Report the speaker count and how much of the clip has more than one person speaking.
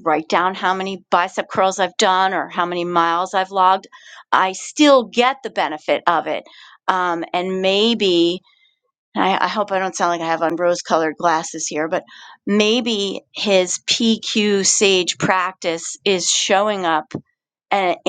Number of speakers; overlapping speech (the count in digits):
1, no overlap